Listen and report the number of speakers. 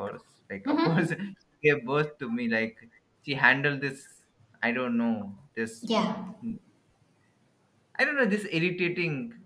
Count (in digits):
2